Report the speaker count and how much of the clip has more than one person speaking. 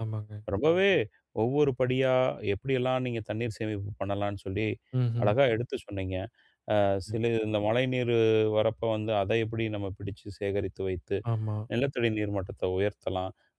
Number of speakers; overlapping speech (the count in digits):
2, about 1%